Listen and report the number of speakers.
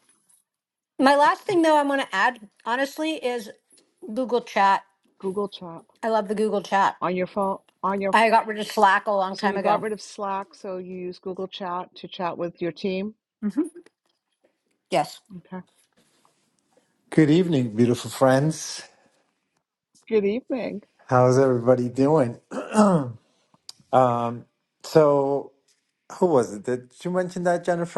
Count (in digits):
3